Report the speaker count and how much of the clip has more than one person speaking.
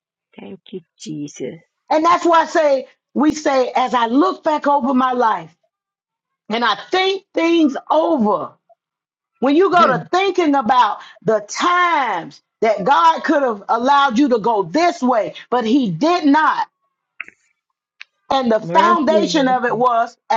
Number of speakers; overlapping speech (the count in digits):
2, about 5%